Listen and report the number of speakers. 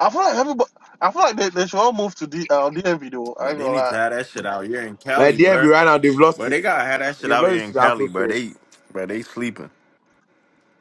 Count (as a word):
three